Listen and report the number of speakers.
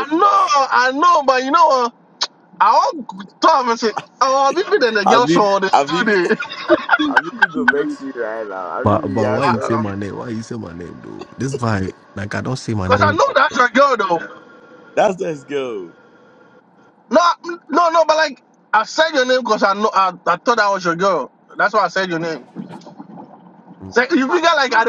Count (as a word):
three